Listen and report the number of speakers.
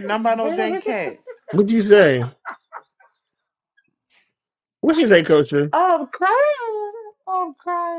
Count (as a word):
three